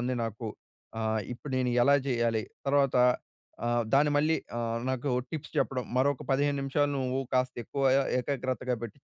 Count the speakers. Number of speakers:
1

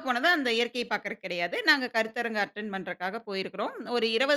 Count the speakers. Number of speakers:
1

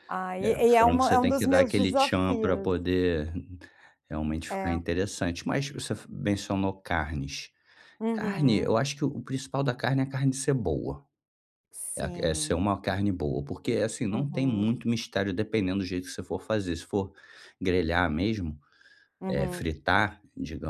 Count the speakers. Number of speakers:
2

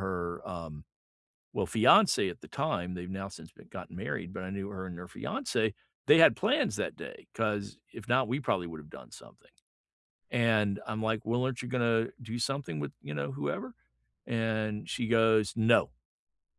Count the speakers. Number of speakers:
1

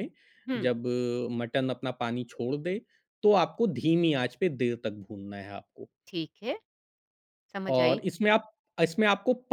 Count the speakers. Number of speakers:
2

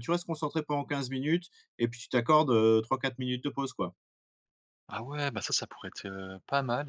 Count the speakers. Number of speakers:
2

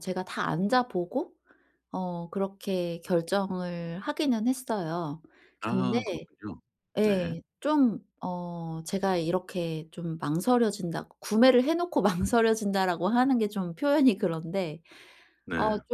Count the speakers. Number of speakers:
2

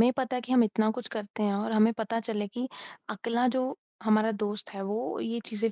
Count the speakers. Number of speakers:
1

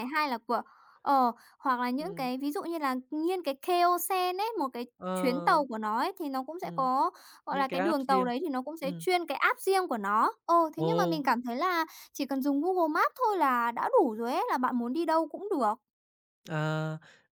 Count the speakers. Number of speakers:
2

